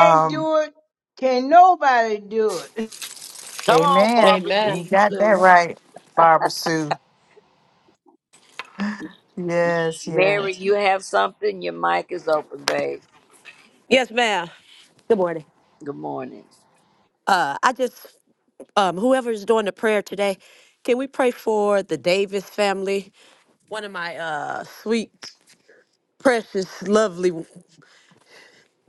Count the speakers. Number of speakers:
four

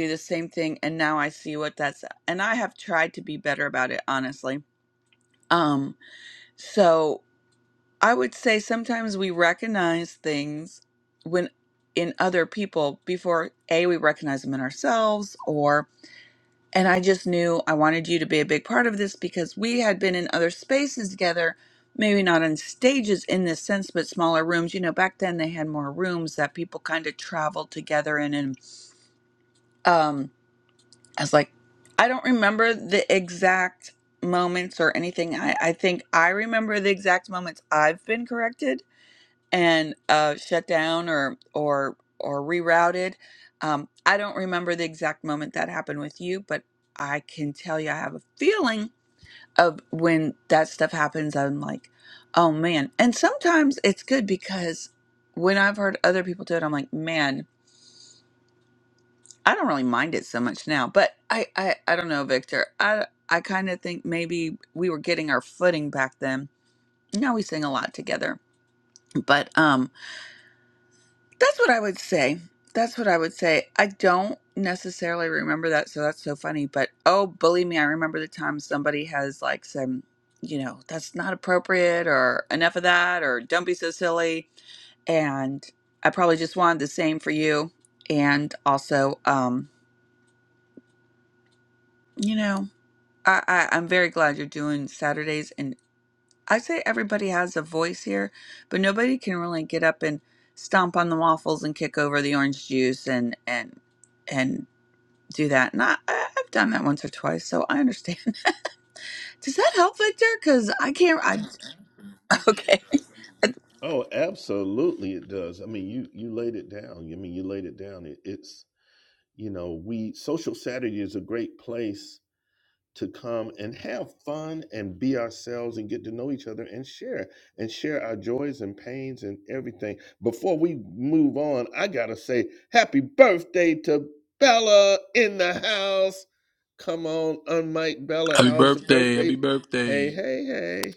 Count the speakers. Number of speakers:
three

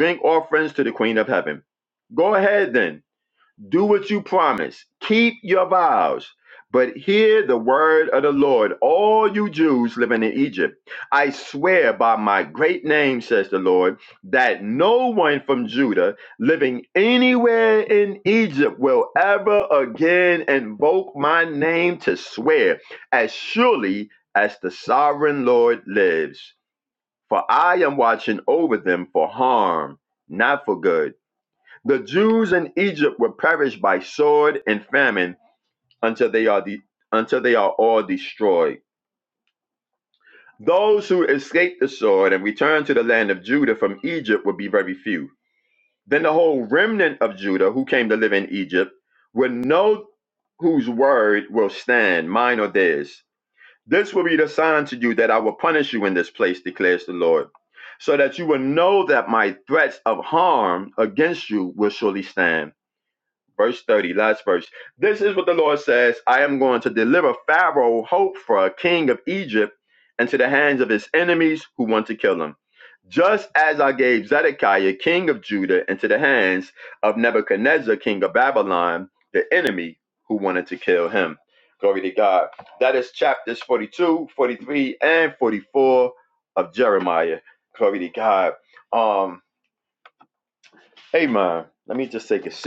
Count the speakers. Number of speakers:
one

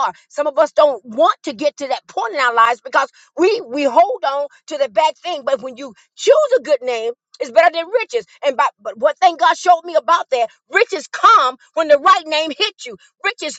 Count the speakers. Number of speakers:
one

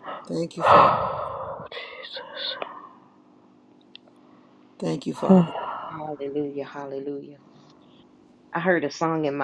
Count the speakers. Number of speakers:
three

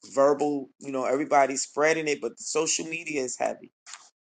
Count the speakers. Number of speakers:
one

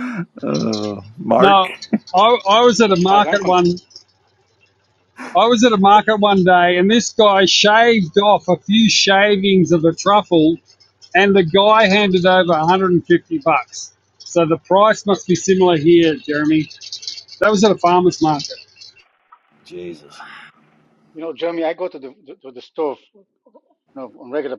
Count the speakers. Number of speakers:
three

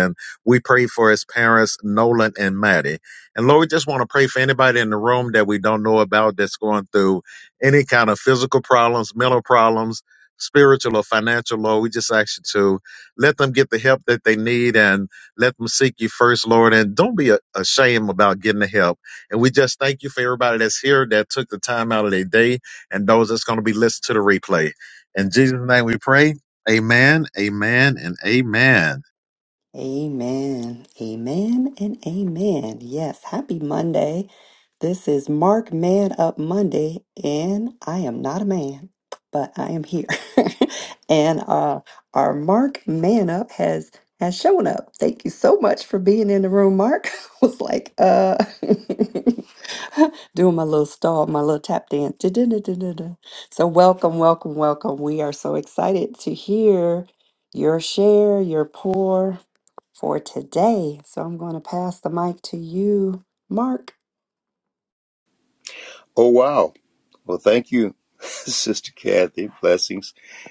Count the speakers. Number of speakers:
three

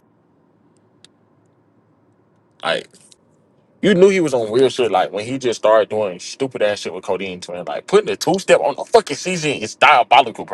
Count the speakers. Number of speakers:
one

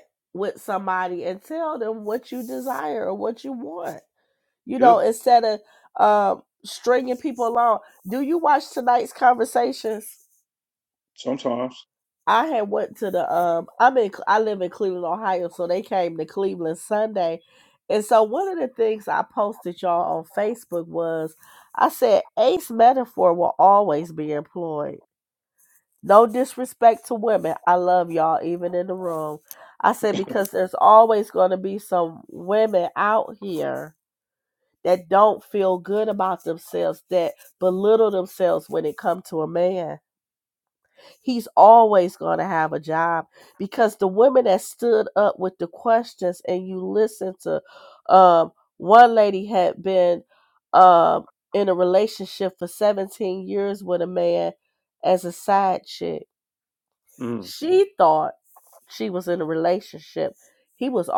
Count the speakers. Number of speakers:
two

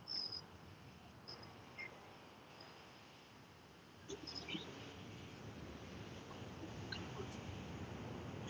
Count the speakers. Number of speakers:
zero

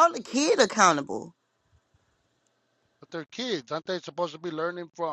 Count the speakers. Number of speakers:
two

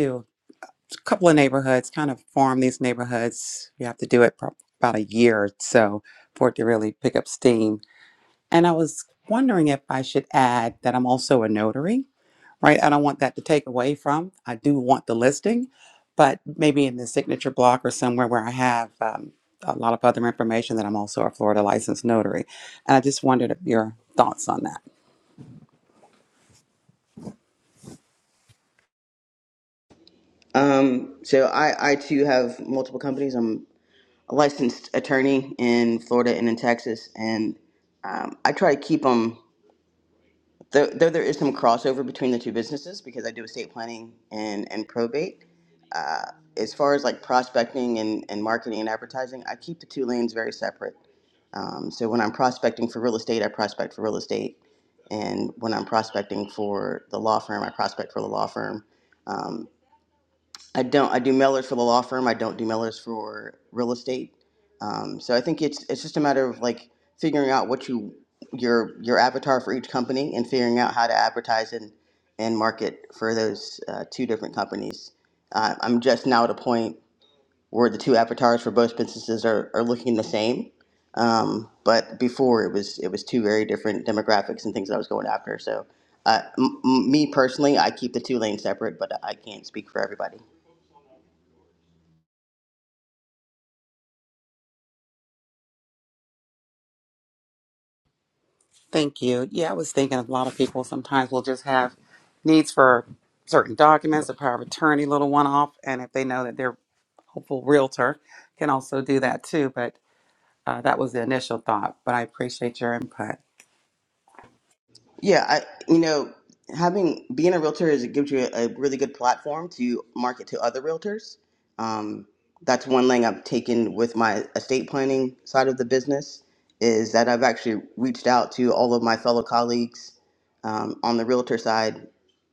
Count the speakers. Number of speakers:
two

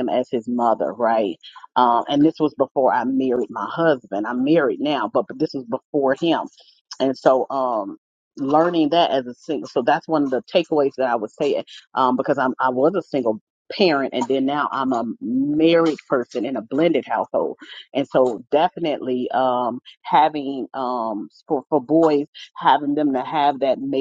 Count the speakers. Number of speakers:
one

